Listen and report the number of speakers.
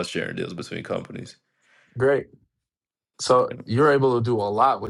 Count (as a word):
two